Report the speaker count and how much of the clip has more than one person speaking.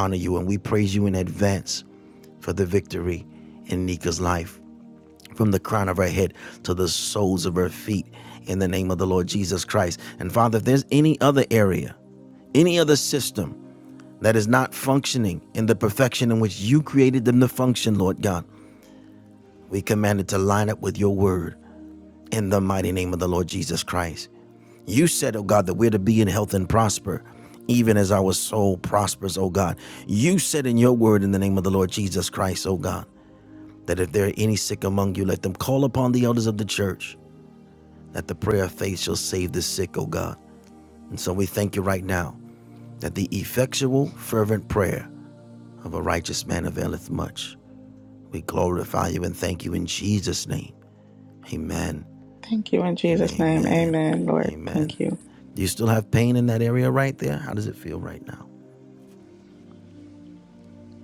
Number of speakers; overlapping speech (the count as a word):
two, about 2%